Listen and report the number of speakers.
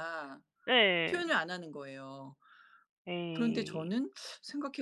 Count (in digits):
2